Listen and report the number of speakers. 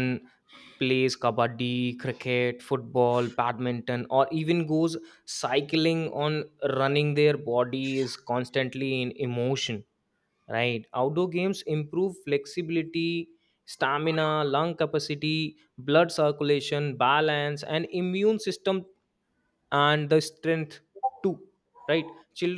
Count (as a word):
one